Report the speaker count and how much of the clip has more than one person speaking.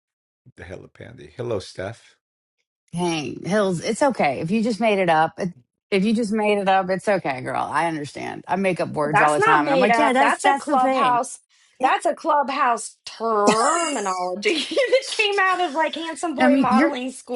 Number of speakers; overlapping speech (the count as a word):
three, about 16%